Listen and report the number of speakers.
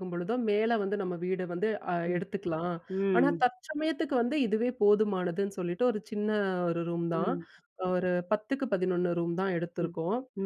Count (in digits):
2